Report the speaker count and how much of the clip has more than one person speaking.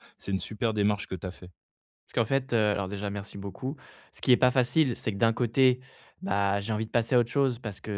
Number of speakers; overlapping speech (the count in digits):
2, no overlap